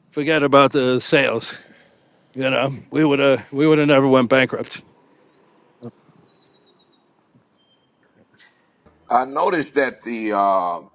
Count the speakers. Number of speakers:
2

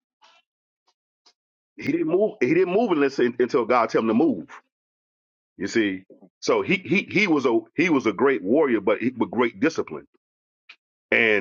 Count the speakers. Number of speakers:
1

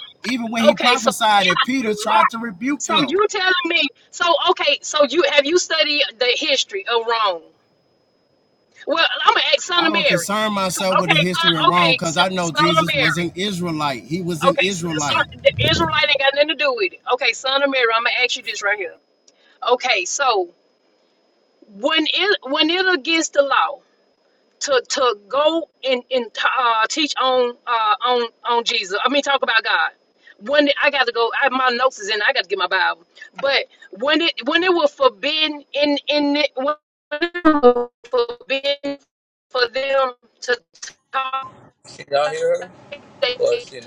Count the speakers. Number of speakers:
3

